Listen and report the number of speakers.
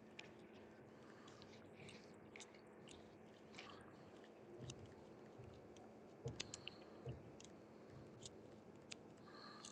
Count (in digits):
0